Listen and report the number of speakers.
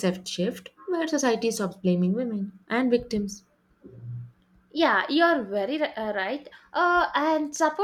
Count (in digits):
2